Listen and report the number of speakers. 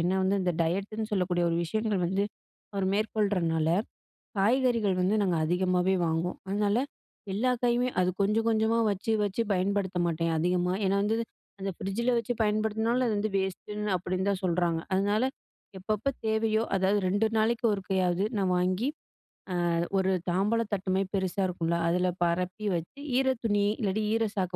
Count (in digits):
1